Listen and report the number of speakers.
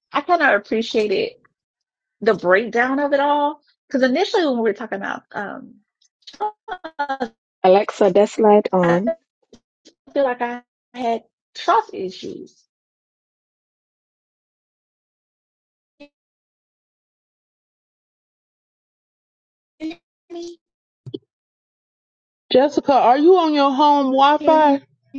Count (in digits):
3